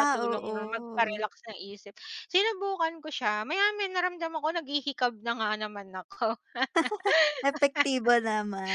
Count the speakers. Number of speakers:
2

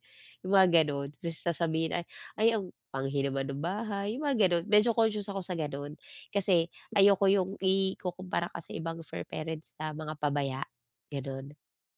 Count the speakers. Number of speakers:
1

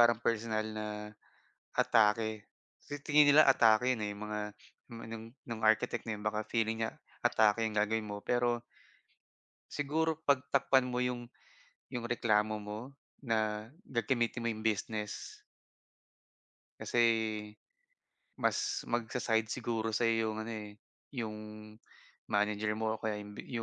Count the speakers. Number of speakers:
1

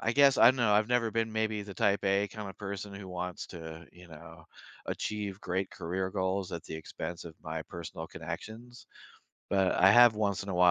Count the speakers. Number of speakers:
1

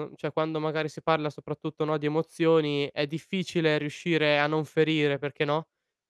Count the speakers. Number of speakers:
1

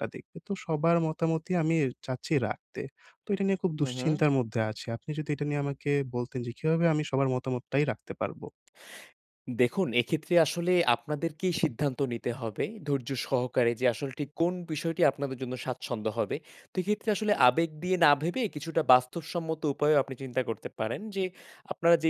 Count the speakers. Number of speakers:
2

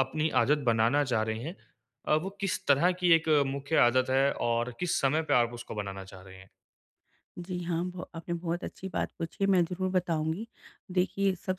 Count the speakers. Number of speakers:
2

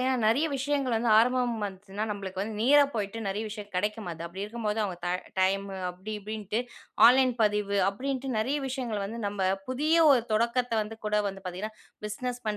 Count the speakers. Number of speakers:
1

